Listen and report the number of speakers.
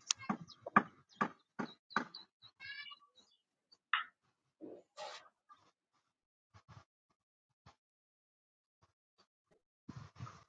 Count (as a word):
zero